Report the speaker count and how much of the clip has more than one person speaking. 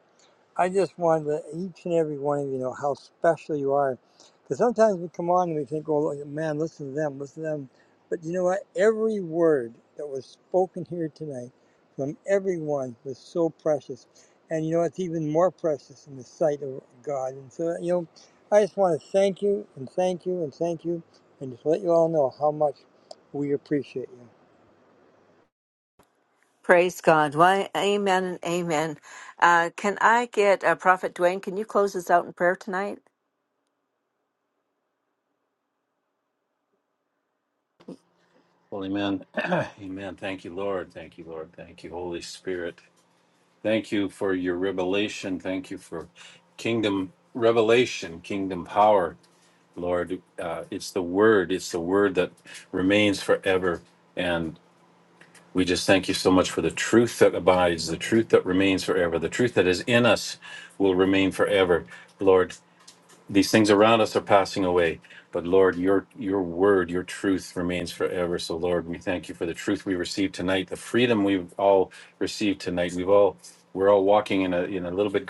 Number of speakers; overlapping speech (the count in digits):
3, no overlap